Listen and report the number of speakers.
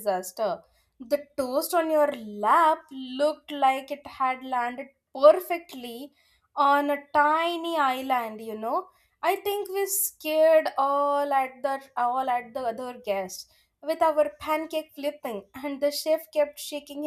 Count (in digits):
1